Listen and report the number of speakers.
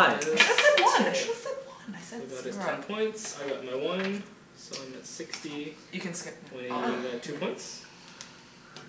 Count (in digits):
2